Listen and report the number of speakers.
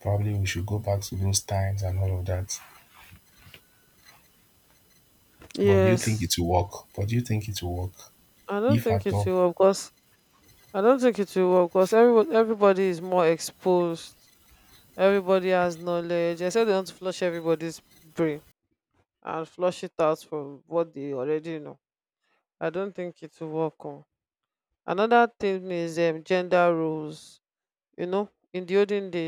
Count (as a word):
two